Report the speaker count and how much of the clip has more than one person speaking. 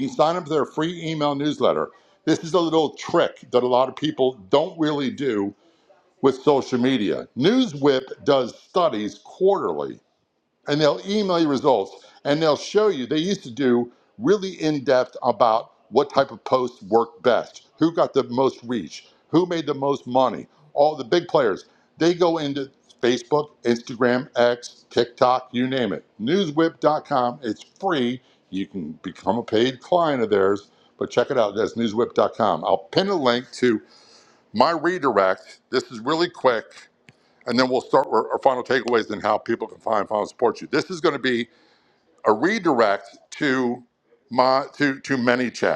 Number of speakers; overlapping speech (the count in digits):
1, no overlap